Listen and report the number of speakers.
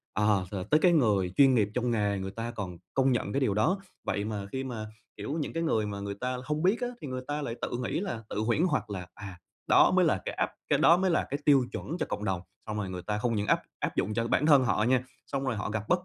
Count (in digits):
1